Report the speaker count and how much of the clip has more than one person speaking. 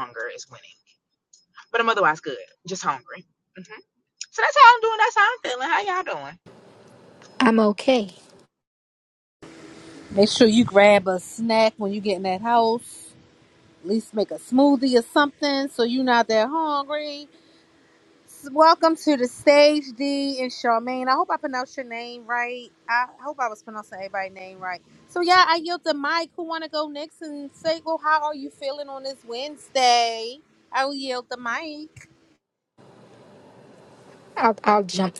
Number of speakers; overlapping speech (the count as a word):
three, no overlap